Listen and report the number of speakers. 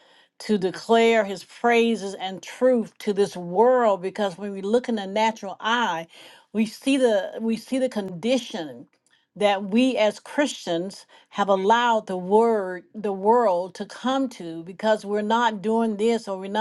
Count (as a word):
one